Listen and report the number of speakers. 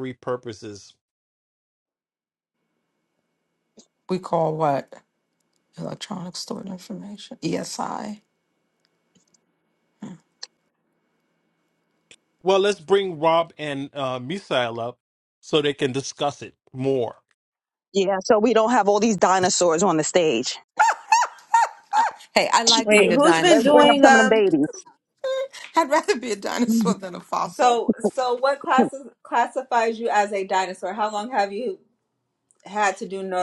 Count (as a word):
four